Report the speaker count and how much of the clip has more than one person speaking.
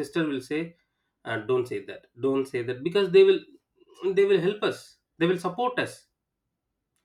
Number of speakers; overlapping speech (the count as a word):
one, no overlap